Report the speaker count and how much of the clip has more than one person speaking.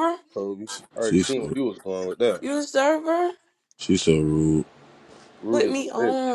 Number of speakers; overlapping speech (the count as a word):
three, about 21%